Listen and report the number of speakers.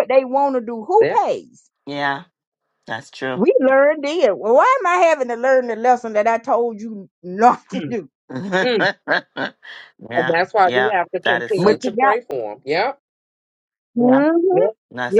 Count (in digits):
3